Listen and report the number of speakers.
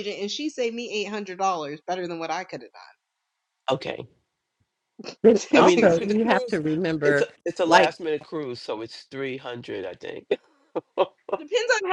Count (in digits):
3